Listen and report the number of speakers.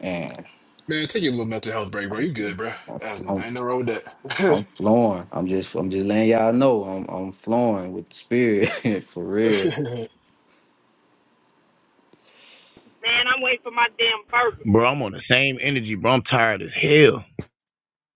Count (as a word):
four